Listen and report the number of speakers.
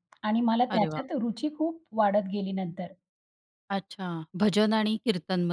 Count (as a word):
two